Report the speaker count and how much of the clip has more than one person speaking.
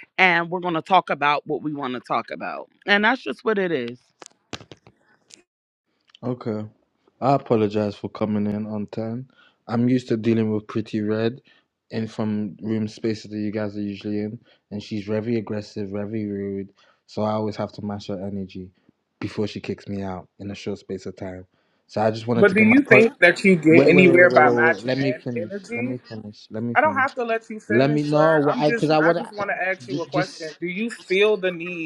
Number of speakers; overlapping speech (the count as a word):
three, about 18%